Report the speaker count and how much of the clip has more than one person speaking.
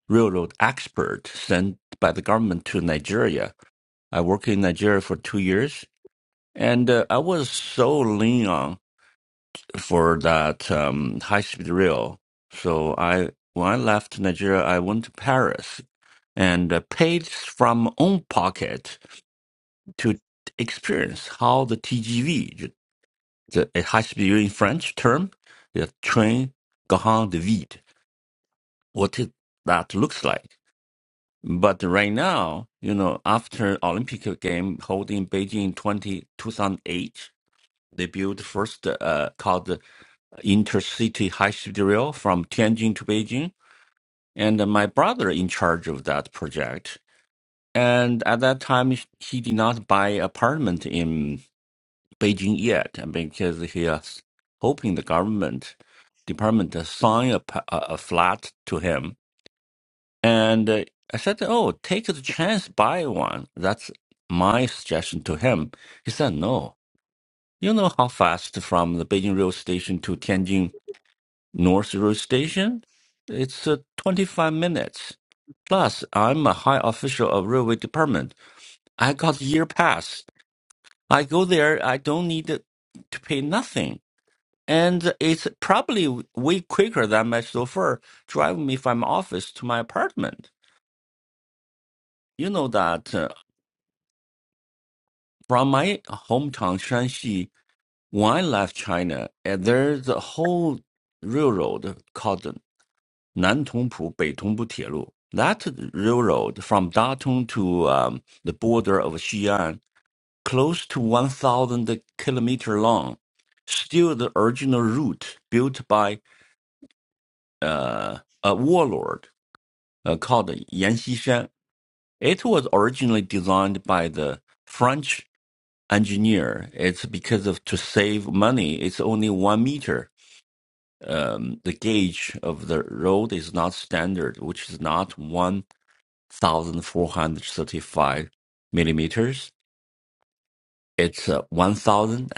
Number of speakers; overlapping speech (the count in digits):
1, no overlap